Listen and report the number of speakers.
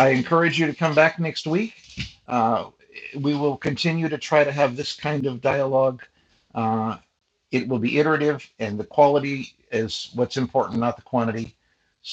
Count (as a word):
one